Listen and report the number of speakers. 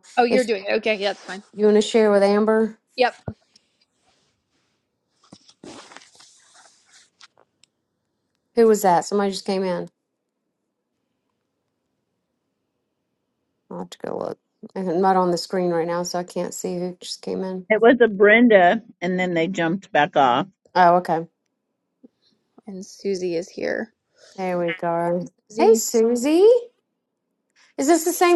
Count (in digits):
3